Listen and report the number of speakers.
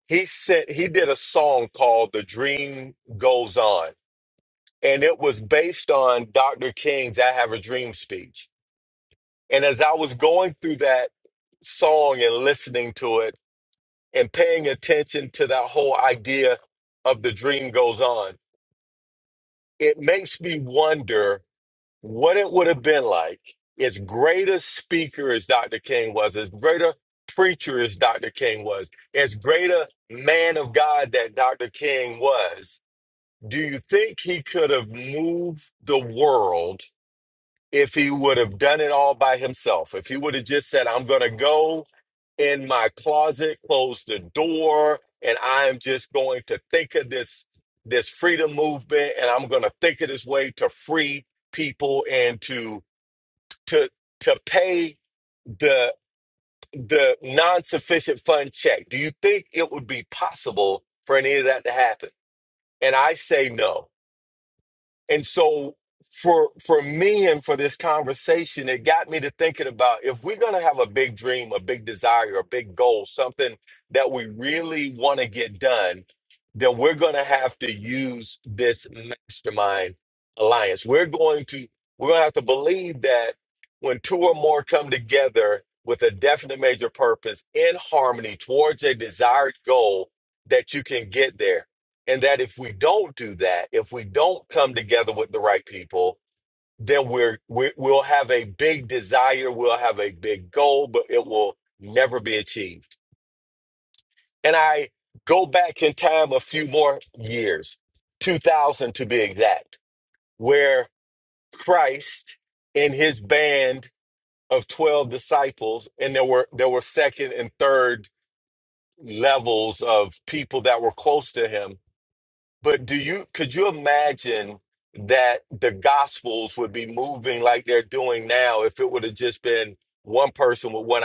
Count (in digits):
1